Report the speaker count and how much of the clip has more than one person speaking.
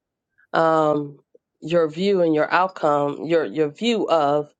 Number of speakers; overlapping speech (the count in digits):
1, no overlap